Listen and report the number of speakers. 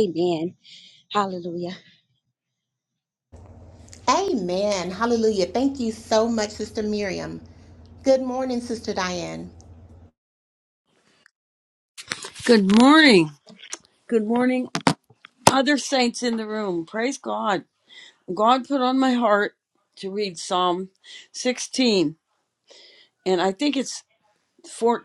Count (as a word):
three